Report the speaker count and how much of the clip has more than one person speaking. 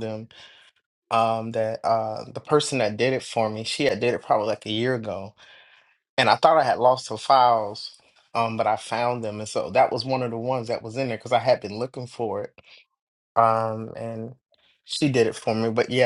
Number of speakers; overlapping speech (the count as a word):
one, no overlap